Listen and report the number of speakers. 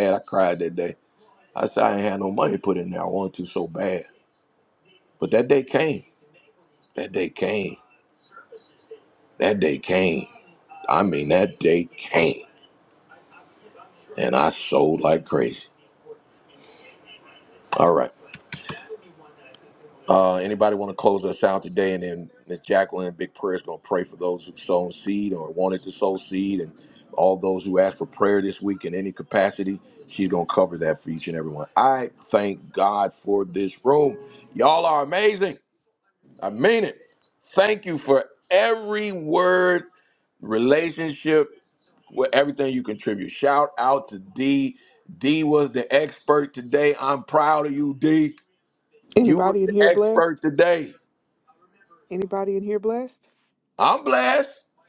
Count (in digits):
2